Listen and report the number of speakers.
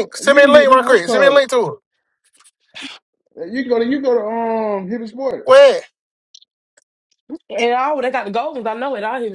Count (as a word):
three